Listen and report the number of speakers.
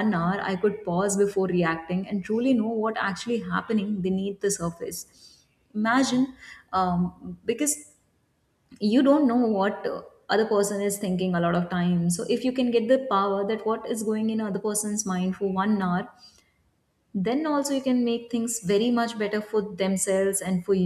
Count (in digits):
1